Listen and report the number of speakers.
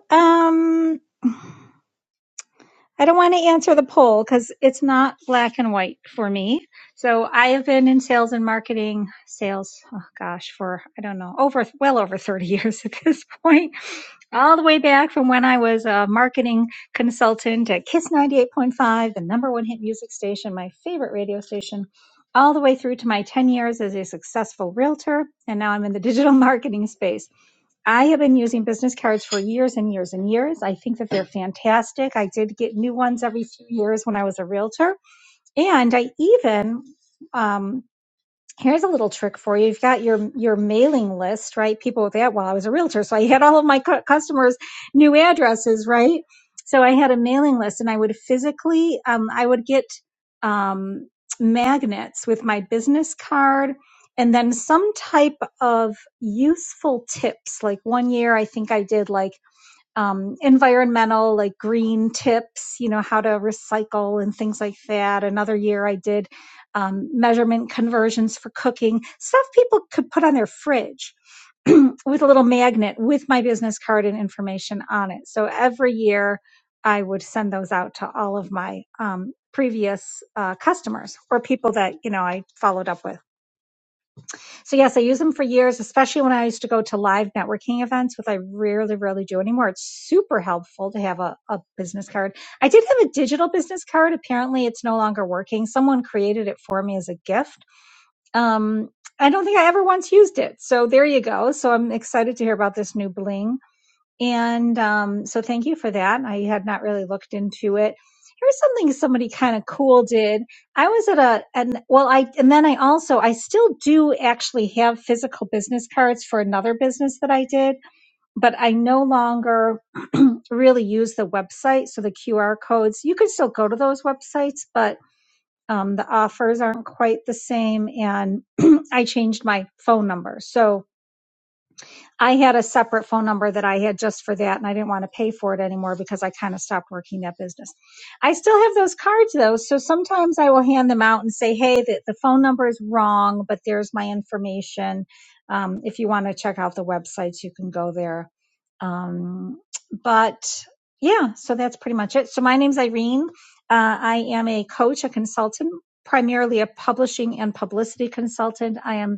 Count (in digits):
1